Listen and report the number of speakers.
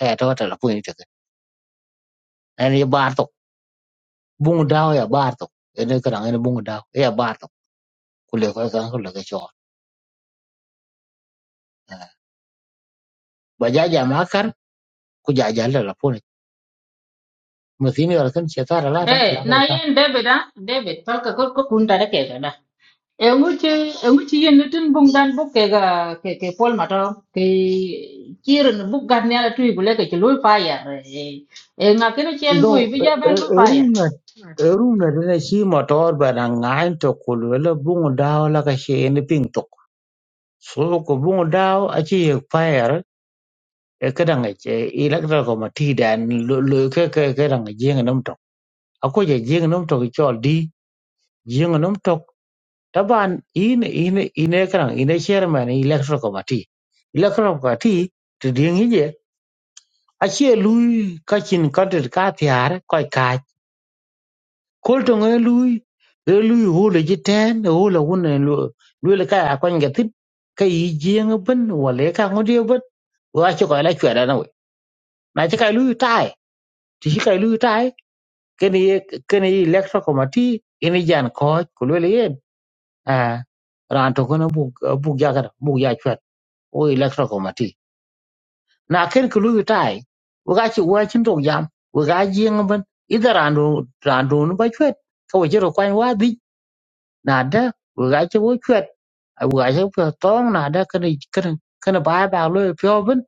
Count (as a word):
two